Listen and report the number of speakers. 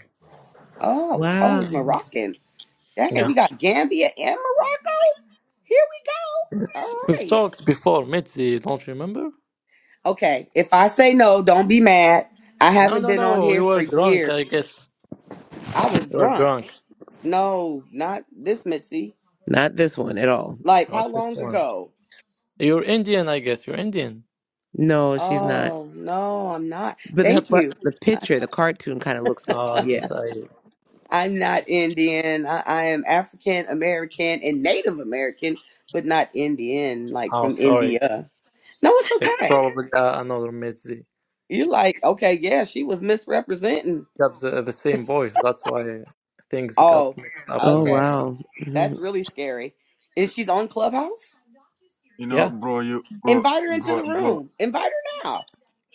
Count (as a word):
four